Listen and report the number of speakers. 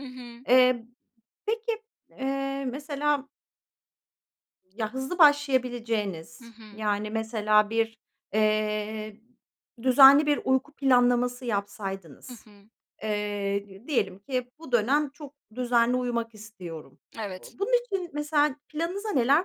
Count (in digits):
2